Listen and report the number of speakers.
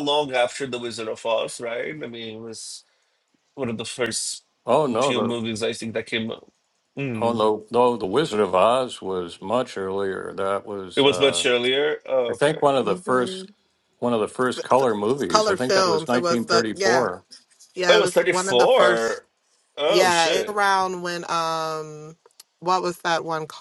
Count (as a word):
three